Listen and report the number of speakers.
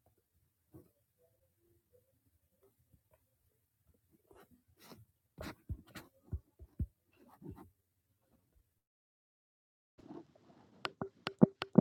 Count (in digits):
0